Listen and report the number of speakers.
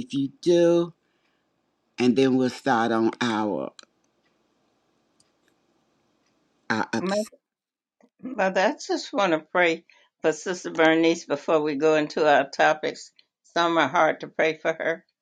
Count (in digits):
2